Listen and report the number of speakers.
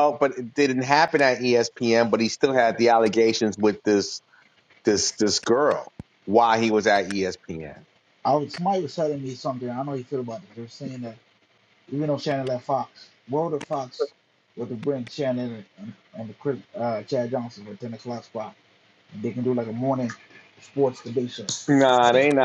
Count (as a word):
two